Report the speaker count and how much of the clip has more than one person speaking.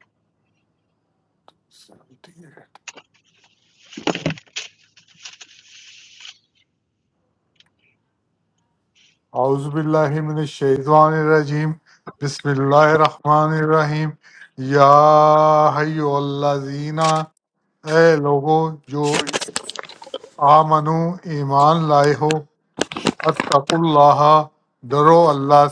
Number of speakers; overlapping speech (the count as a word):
one, no overlap